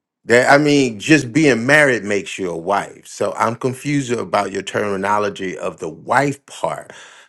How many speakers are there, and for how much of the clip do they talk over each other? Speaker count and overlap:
1, no overlap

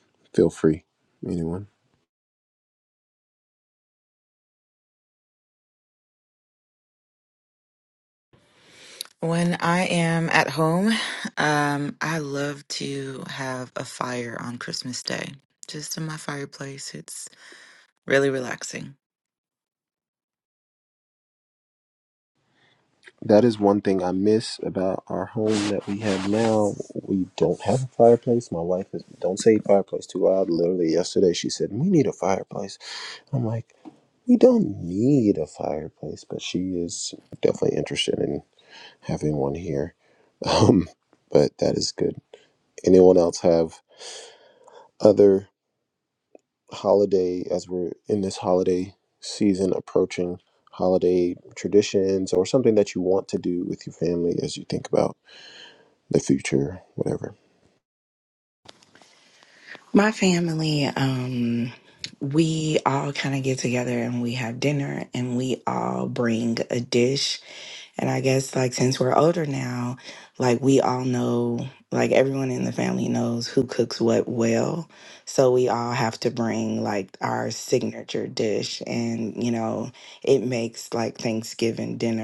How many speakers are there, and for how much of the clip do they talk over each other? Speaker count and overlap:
3, no overlap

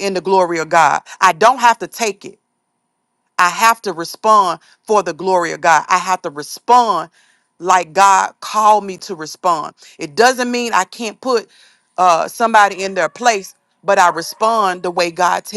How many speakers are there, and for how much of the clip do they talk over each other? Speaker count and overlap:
1, no overlap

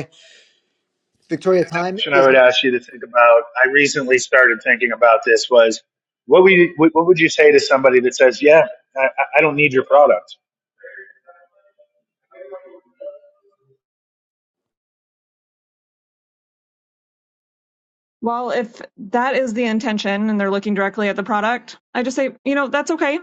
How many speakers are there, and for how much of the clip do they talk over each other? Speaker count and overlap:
3, about 2%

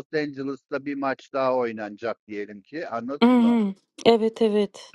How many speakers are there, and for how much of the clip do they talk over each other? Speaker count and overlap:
2, about 7%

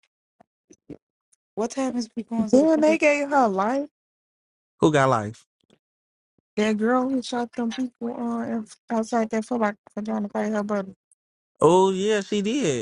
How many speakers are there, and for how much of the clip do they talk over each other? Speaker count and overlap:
3, about 2%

